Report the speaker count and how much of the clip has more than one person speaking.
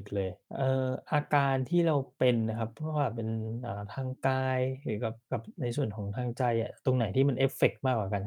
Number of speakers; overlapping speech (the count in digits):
1, no overlap